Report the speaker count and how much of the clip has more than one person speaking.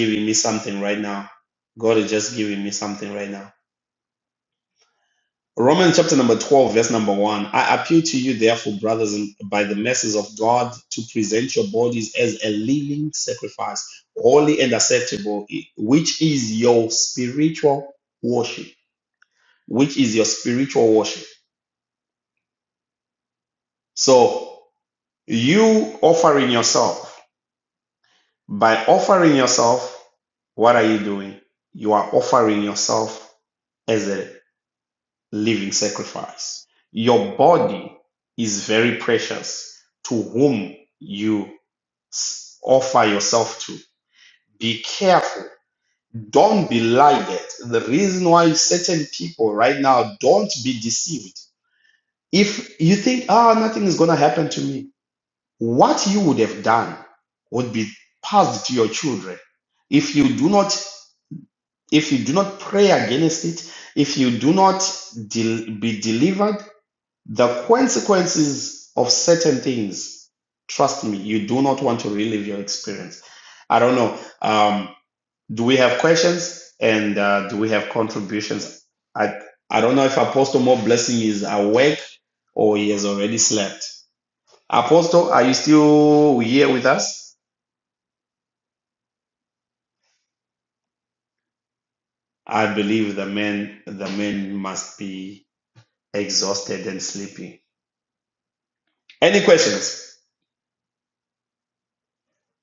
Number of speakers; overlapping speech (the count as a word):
one, no overlap